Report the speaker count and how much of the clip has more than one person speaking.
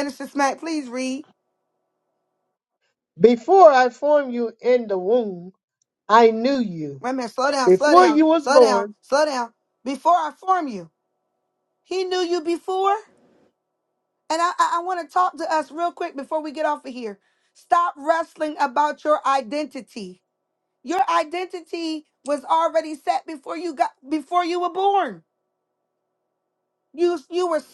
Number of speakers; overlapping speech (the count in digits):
2, about 4%